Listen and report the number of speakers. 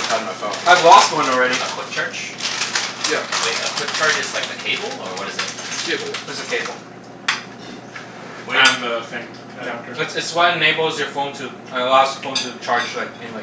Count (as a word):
four